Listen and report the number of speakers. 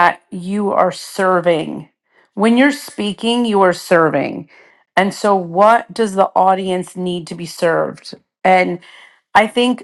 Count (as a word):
one